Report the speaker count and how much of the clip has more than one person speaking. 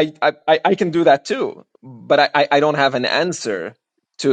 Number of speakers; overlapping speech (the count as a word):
one, no overlap